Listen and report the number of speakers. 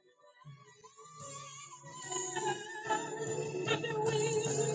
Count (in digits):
0